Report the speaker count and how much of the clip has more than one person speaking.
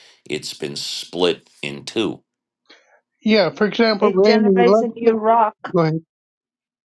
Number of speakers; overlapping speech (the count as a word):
three, about 11%